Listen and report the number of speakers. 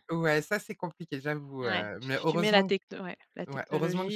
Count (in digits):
2